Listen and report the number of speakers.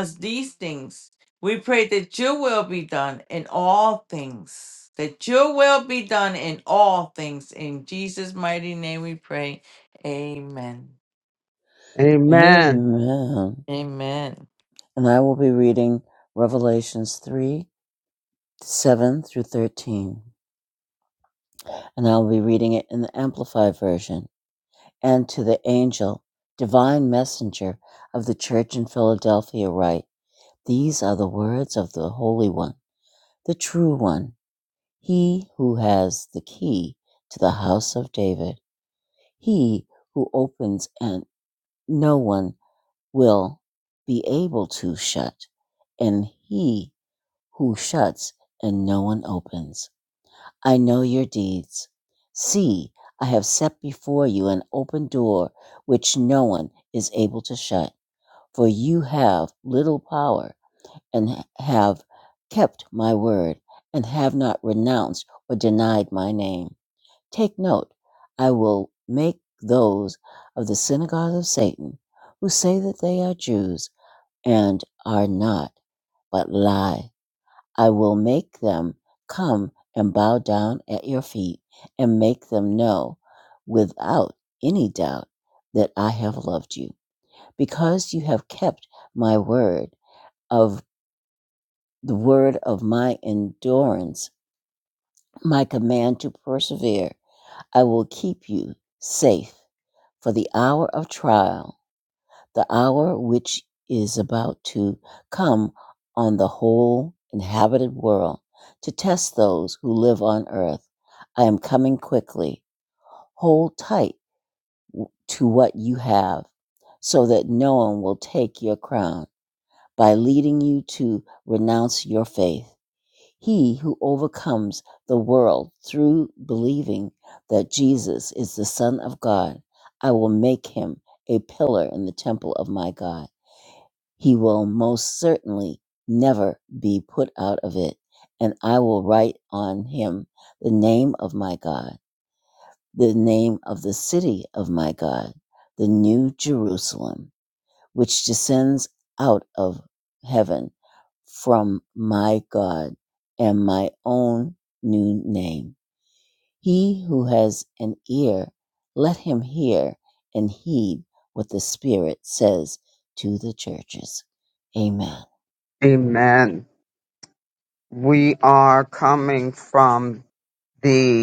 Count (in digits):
3